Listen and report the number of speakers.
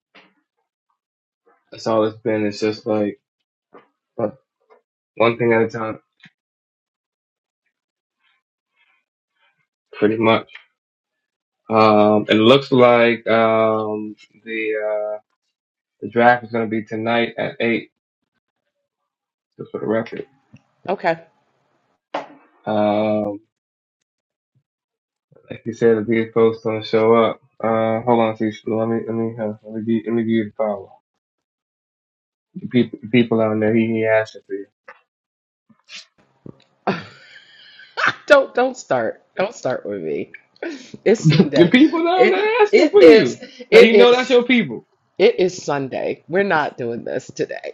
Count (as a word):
two